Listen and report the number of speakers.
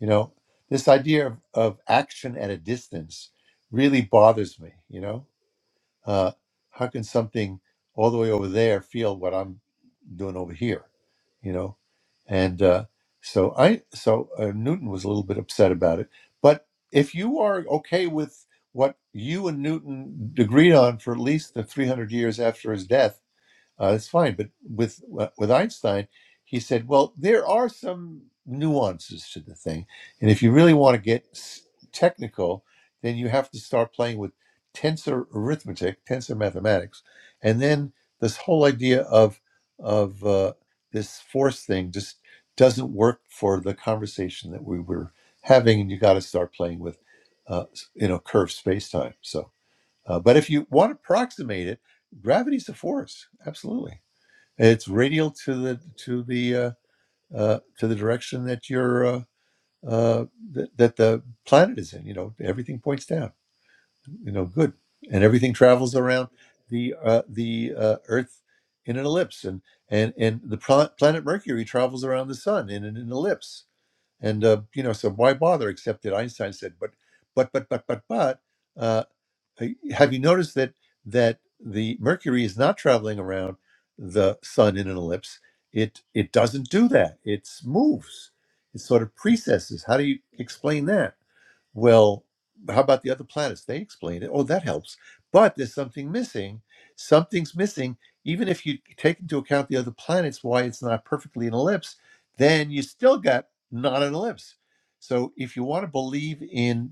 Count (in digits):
1